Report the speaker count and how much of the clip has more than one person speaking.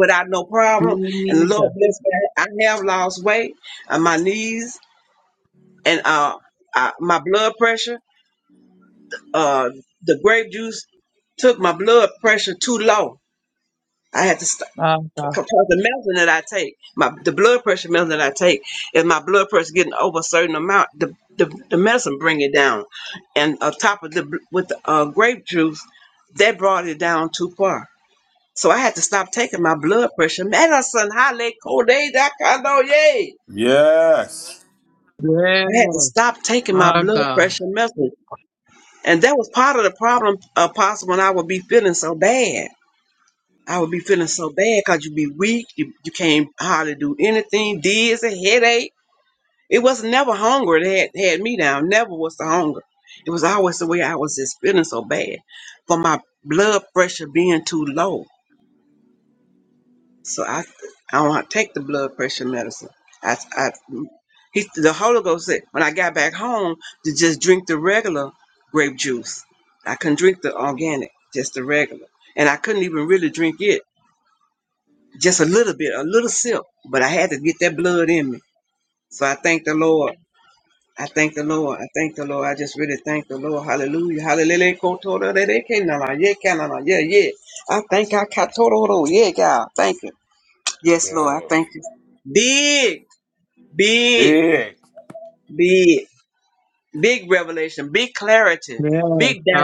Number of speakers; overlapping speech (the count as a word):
three, about 3%